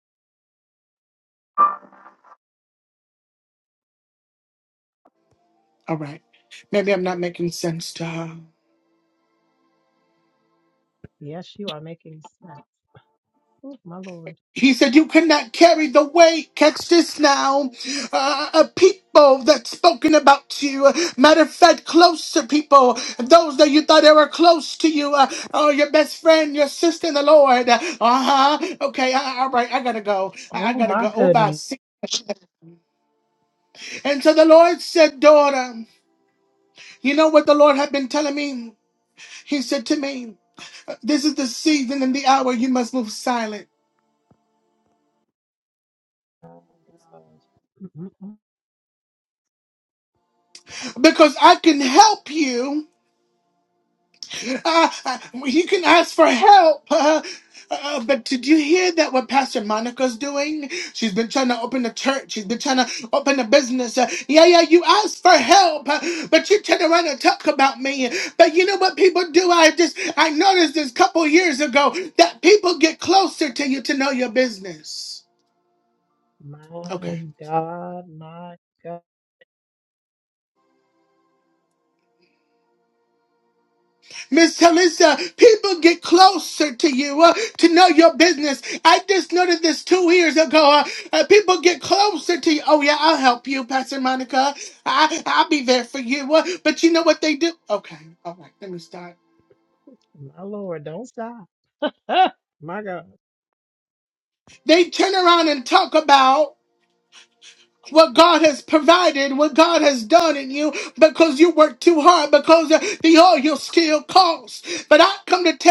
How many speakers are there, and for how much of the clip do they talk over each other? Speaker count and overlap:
2, about 1%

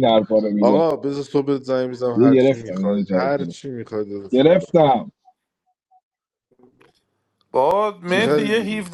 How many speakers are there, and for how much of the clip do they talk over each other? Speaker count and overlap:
3, about 29%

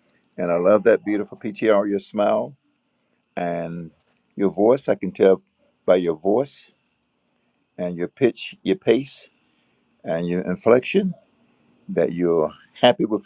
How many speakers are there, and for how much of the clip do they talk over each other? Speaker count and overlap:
1, no overlap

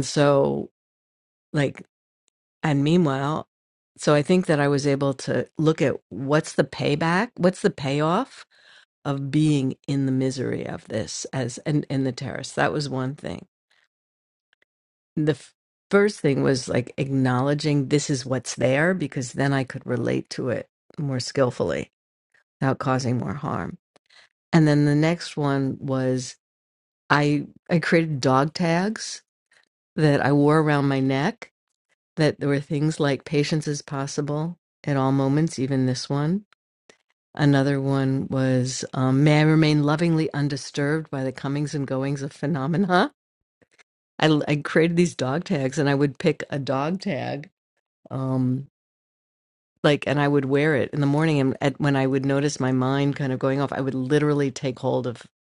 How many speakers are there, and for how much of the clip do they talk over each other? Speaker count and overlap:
1, no overlap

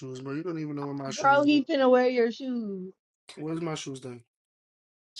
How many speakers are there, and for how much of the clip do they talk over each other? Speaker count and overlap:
2, about 13%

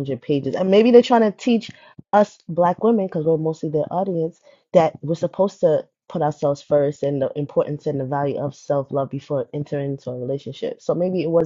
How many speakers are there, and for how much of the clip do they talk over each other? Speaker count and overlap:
1, no overlap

